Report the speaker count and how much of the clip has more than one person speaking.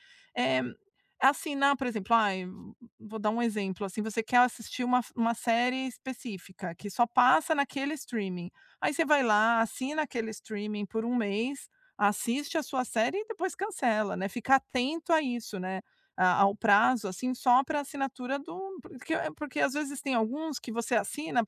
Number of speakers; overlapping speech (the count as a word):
one, no overlap